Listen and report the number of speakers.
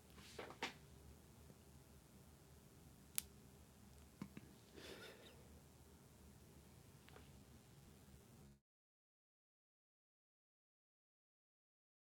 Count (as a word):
zero